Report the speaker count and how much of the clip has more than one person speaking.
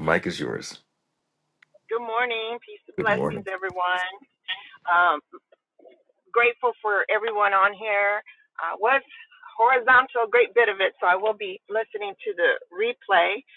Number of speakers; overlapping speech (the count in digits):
2, about 3%